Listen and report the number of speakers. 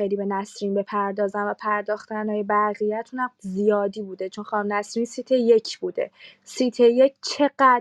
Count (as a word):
one